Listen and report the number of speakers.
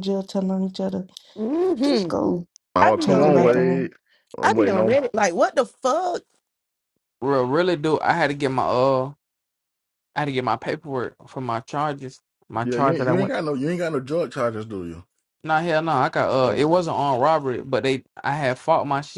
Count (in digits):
4